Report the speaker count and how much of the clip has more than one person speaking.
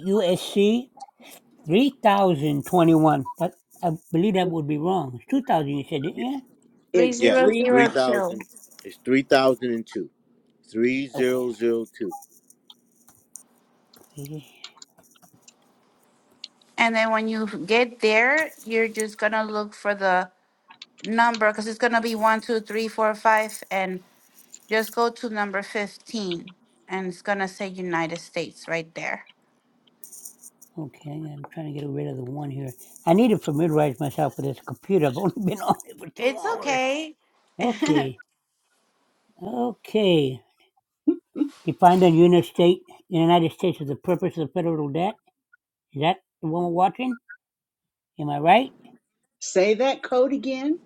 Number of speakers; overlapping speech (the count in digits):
4, about 3%